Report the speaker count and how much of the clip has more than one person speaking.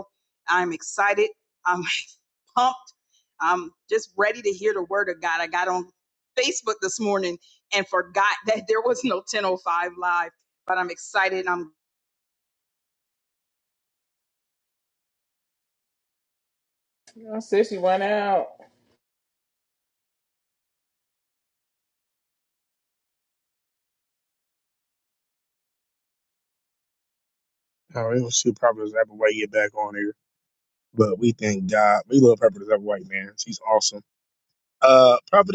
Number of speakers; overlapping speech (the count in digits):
3, no overlap